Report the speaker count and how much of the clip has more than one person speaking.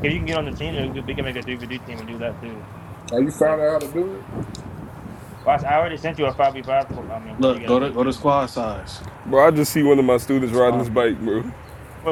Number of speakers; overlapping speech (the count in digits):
4, about 13%